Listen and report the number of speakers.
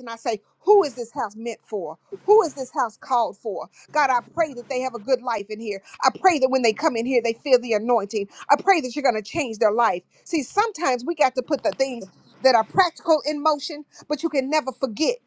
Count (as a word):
one